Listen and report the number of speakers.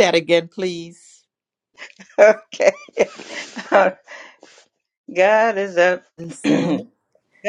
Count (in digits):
2